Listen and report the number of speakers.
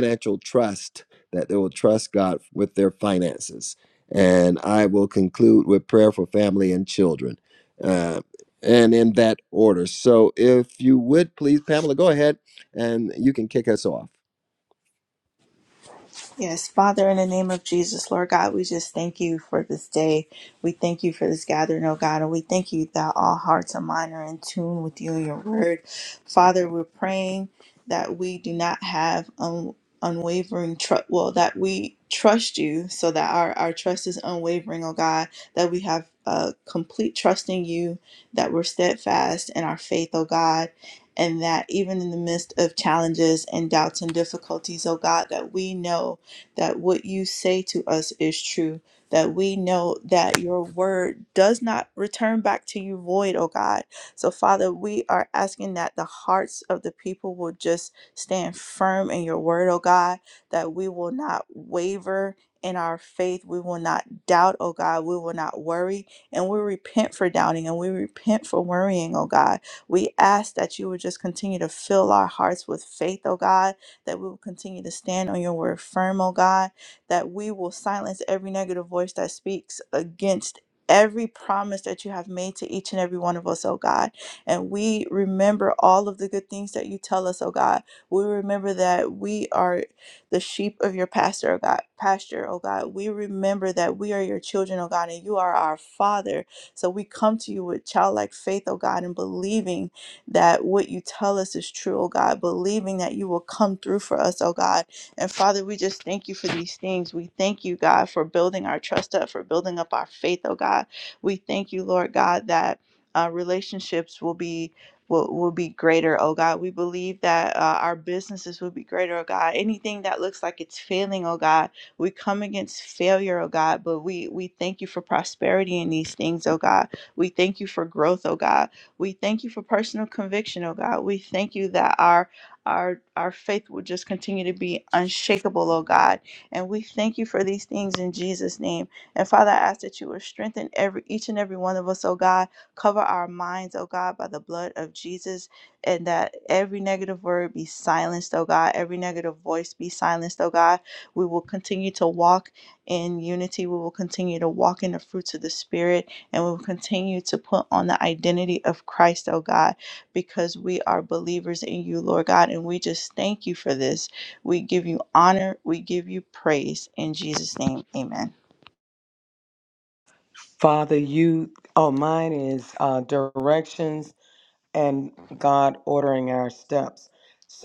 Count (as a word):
three